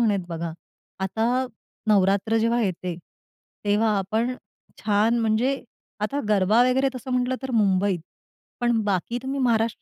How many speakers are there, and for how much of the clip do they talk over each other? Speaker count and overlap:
1, no overlap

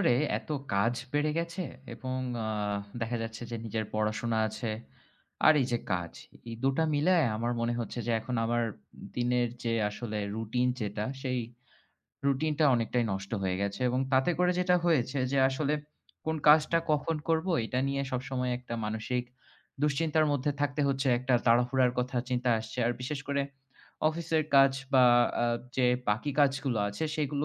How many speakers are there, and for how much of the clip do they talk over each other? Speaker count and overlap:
1, no overlap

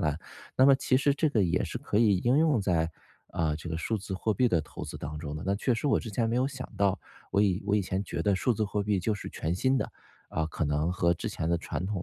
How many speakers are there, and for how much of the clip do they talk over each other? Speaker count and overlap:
1, no overlap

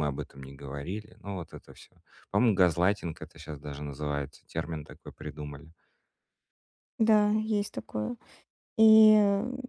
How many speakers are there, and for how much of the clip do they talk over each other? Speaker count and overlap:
2, no overlap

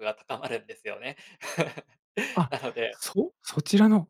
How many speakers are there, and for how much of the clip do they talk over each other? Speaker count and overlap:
2, about 1%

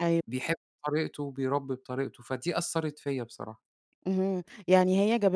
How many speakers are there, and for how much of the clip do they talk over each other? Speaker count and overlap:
2, no overlap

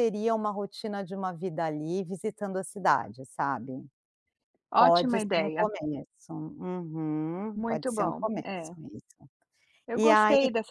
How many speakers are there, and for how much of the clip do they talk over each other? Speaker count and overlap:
2, about 19%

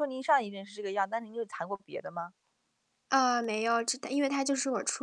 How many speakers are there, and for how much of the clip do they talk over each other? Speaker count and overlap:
2, no overlap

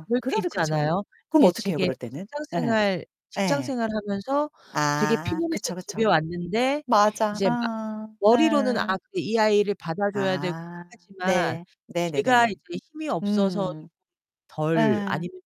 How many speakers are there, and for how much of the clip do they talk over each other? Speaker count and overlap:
2, about 41%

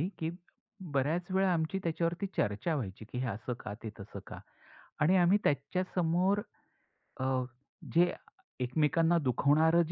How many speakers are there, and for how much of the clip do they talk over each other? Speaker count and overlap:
1, no overlap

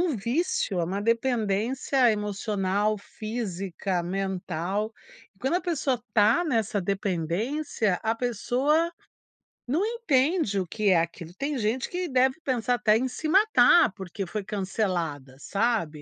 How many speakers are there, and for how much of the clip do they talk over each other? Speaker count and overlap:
1, no overlap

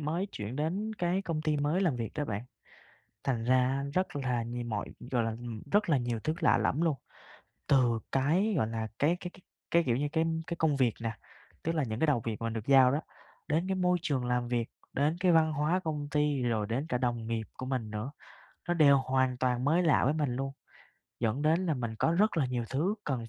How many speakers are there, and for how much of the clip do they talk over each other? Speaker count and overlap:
1, no overlap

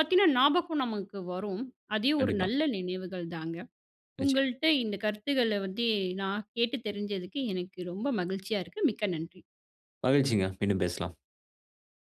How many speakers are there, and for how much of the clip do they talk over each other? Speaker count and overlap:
2, about 4%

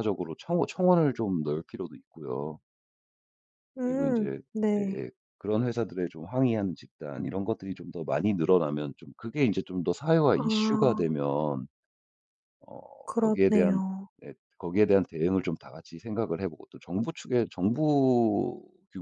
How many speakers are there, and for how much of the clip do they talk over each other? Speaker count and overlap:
2, about 9%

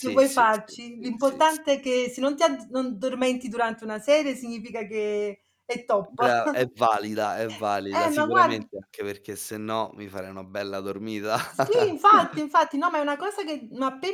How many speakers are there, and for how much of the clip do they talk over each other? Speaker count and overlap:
2, about 17%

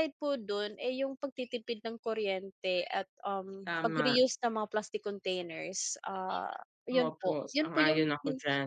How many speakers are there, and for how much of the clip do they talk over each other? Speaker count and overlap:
2, about 20%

